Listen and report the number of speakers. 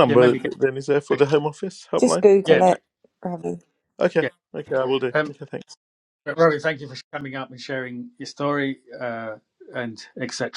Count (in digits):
3